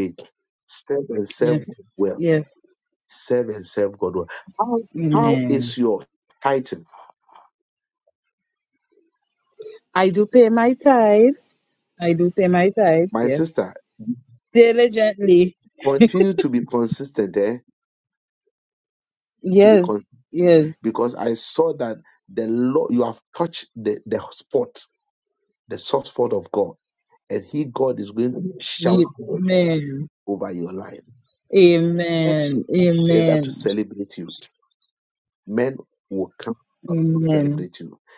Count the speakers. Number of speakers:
two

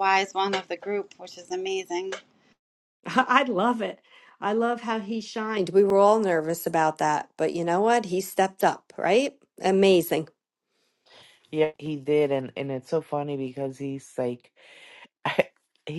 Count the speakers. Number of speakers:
three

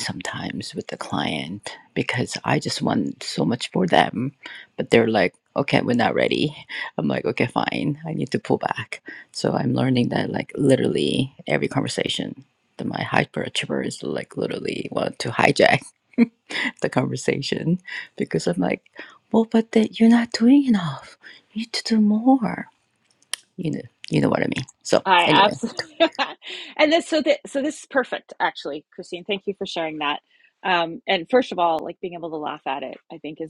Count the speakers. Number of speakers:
two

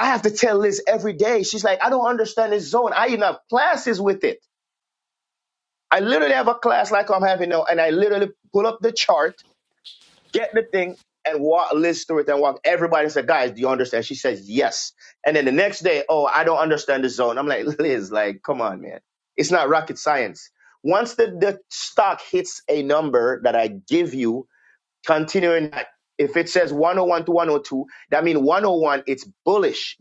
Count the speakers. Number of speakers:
one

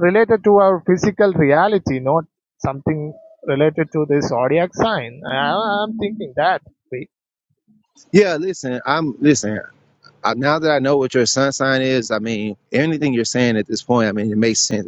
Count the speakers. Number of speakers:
two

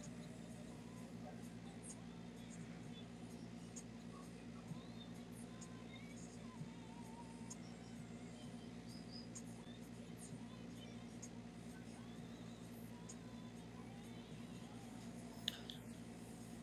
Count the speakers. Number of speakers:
zero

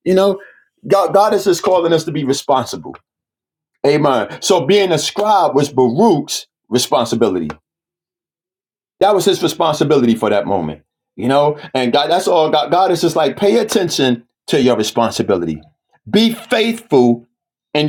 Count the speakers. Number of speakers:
one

